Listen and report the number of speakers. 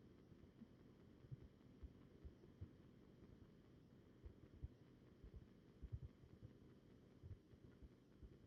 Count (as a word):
zero